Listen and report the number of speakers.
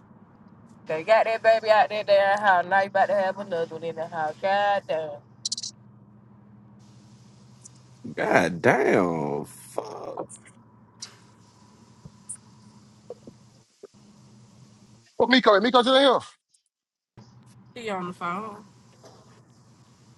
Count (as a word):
three